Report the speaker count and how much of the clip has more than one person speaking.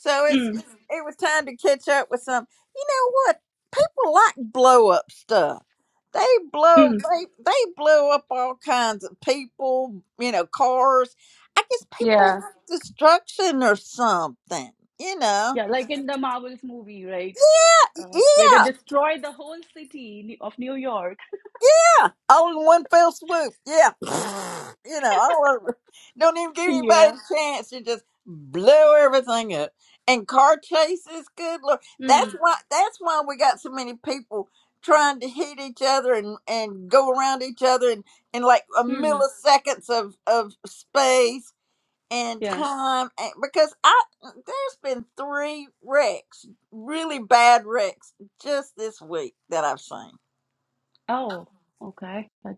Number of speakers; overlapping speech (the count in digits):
2, about 6%